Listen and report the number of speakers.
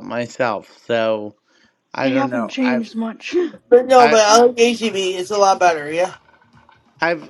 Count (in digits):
3